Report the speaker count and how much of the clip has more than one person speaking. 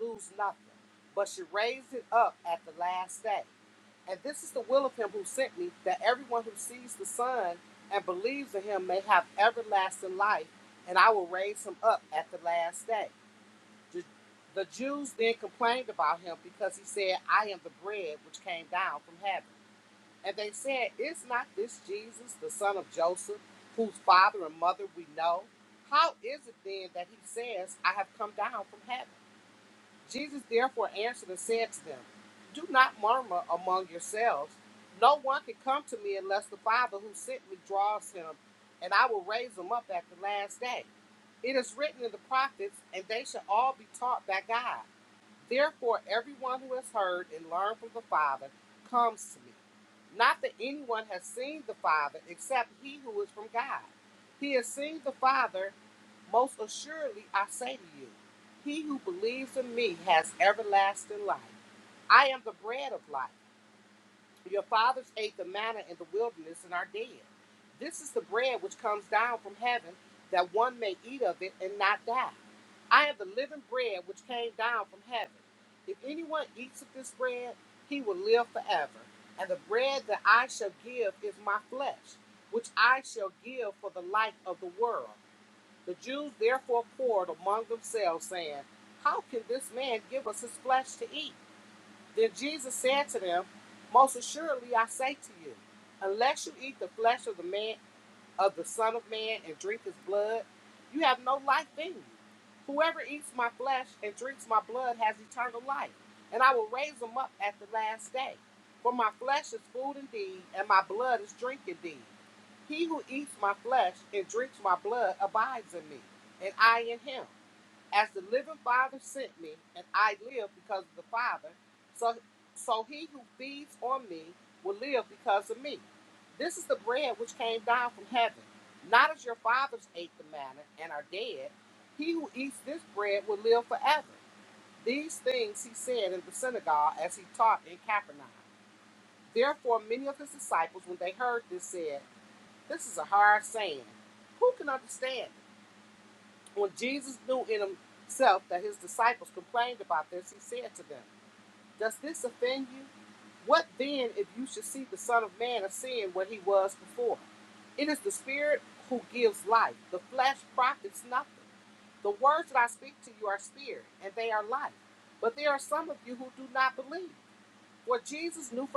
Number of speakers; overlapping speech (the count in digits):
1, no overlap